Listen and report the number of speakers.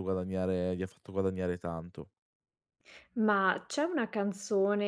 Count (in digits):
2